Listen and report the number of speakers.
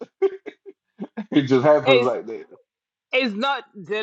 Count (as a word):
two